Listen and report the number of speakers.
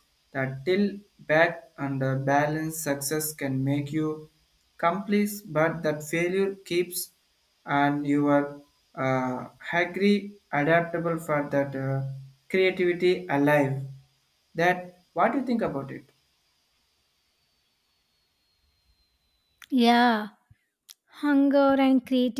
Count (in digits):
2